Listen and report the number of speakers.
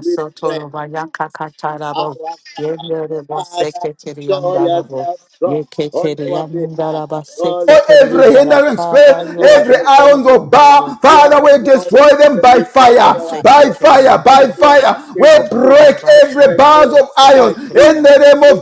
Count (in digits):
3